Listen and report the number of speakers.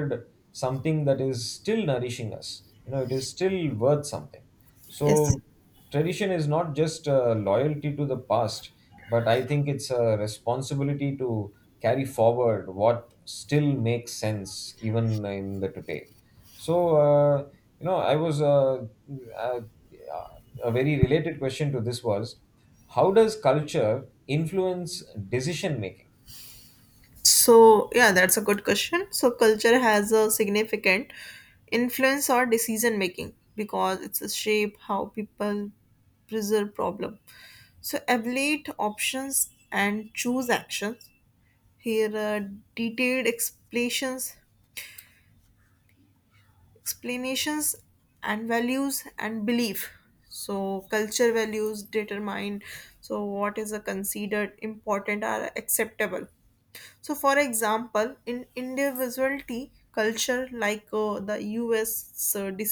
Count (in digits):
2